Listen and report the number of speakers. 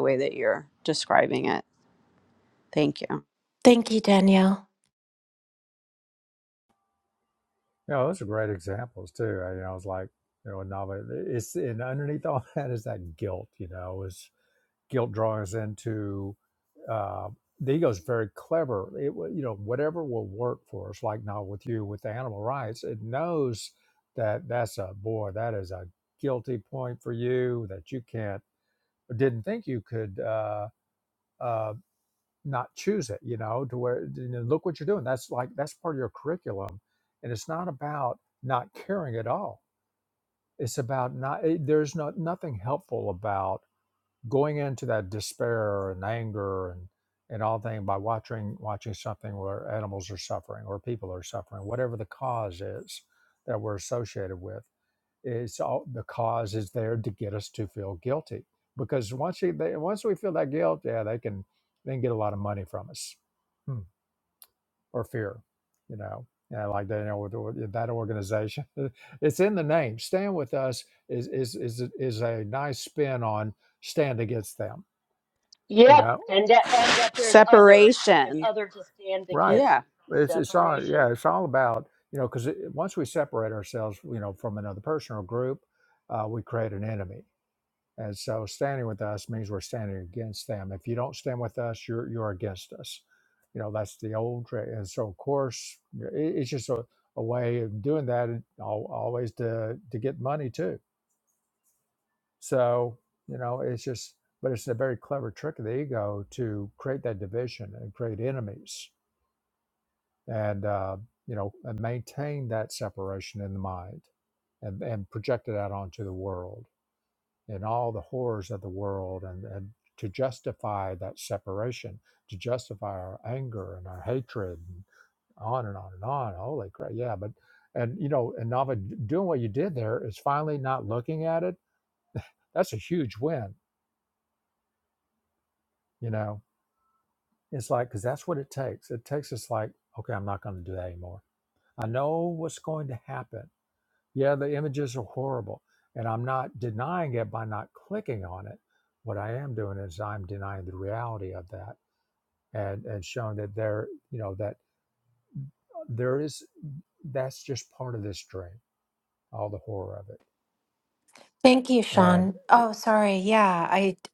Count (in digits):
4